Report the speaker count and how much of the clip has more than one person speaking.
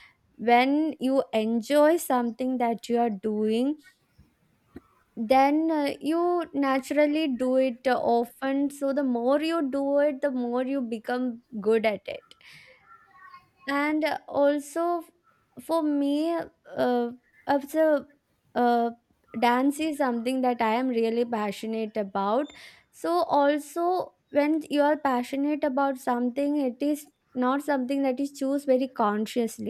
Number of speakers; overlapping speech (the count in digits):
1, no overlap